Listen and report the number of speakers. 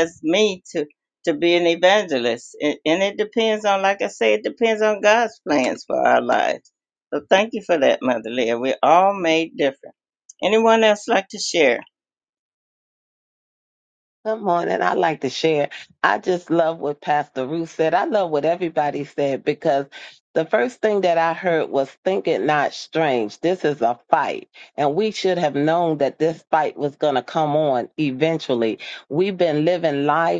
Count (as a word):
two